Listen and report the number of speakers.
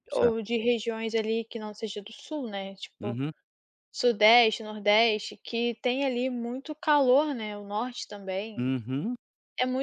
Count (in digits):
2